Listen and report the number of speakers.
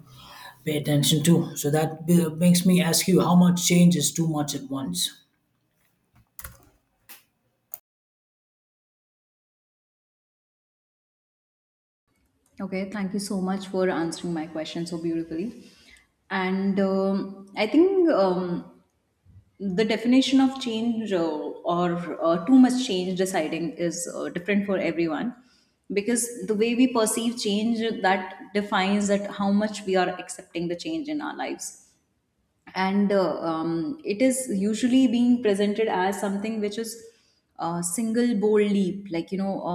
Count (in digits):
2